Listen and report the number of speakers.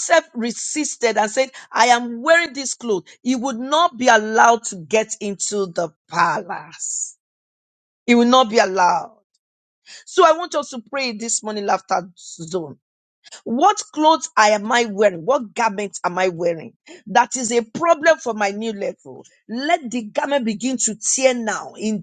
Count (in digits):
1